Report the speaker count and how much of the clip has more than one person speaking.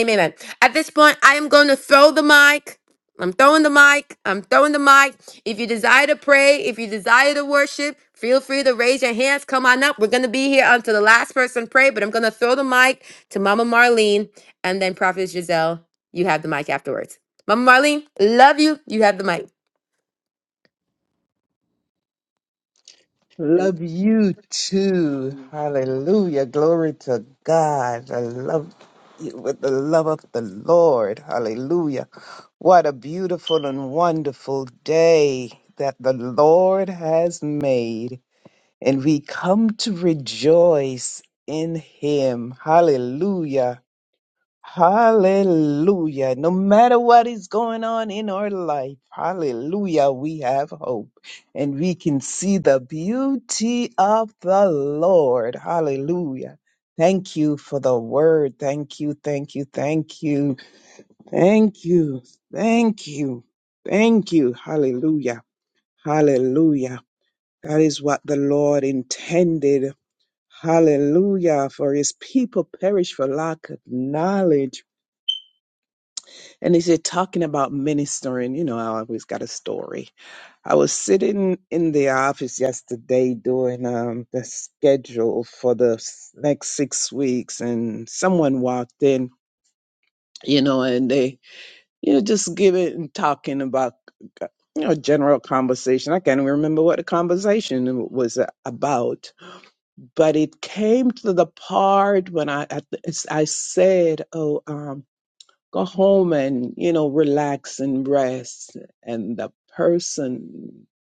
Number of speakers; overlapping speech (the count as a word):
two, no overlap